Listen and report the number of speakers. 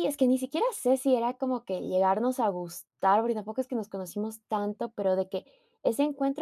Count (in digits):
1